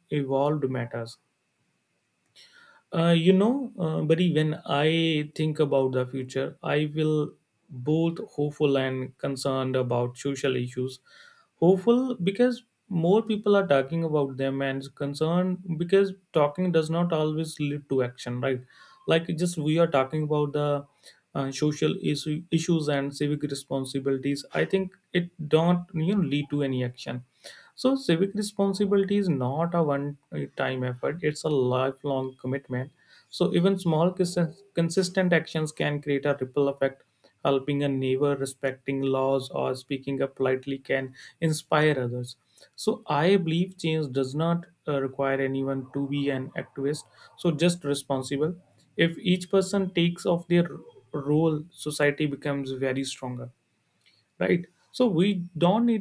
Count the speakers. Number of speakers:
one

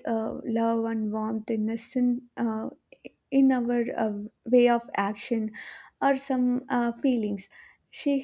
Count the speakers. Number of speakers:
one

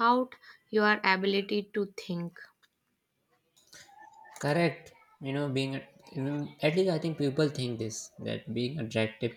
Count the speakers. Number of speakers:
two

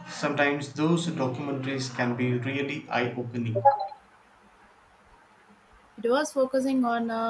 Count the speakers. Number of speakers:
two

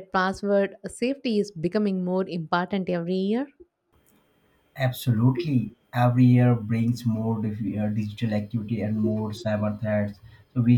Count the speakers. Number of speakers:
two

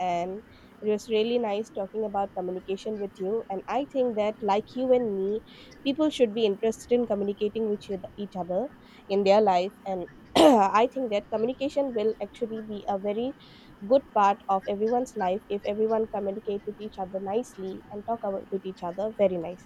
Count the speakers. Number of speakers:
one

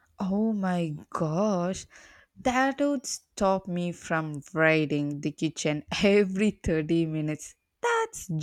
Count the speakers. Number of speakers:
one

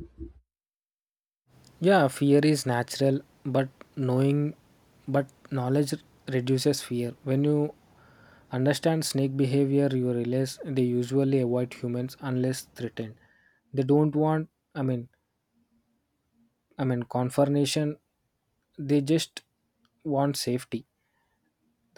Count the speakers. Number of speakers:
one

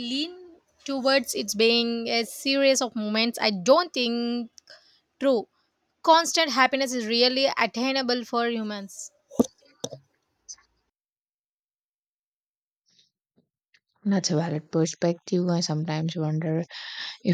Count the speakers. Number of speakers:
two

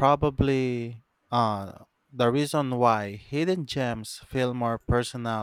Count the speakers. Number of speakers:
one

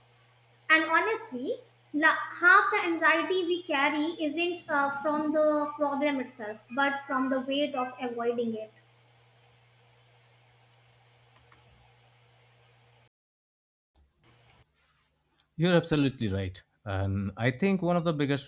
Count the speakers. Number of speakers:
two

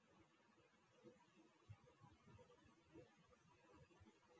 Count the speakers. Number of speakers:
zero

